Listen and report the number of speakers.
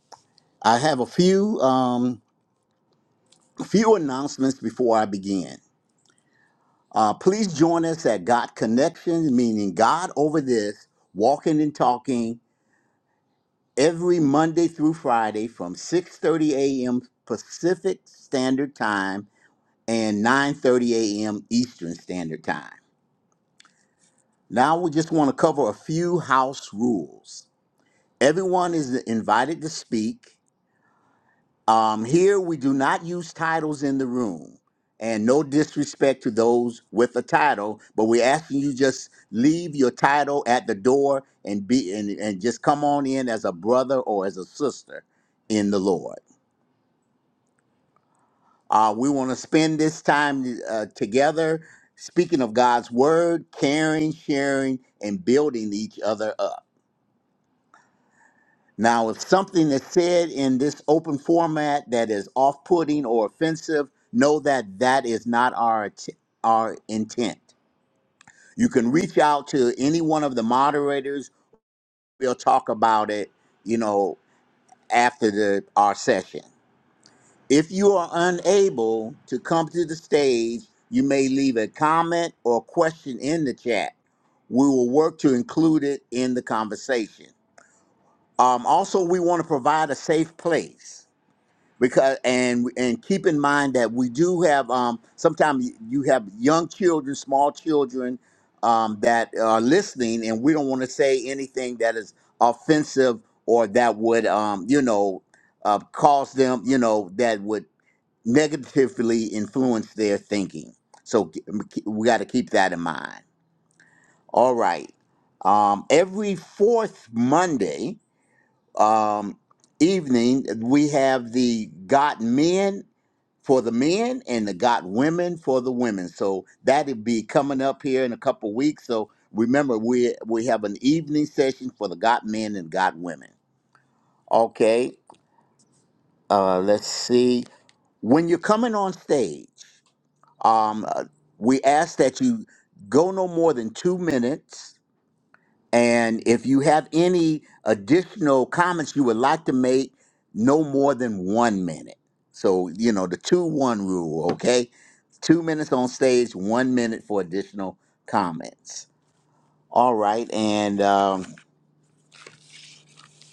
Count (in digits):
1